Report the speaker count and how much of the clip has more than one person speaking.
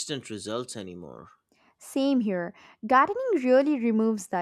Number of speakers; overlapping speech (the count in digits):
2, no overlap